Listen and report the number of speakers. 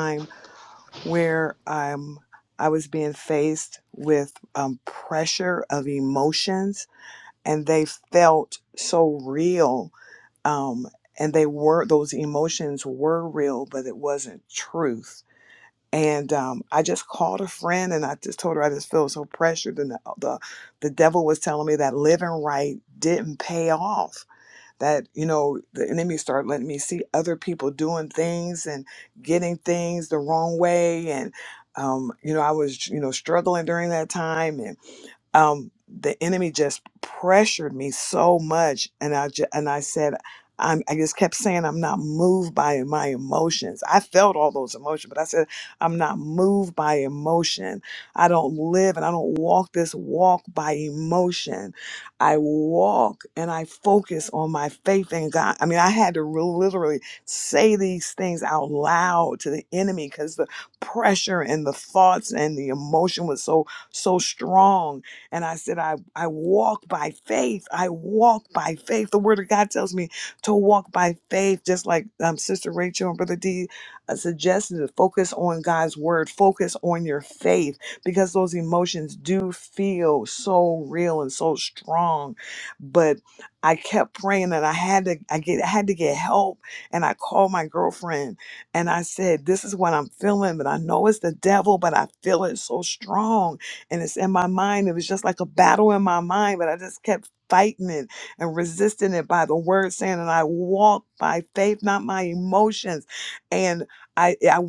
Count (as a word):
one